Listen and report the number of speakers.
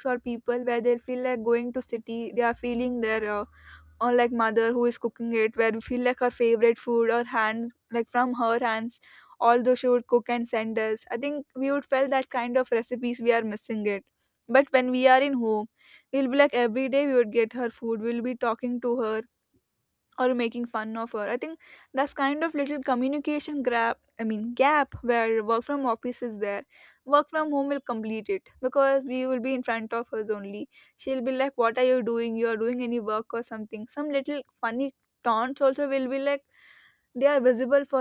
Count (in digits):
1